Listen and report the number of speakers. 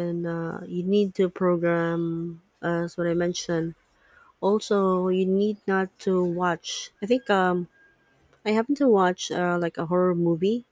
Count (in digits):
1